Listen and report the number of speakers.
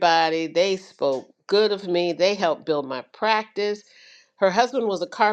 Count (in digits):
1